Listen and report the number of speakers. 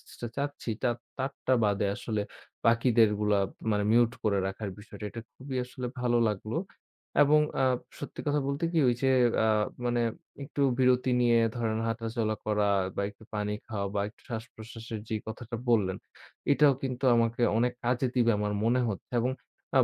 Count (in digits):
1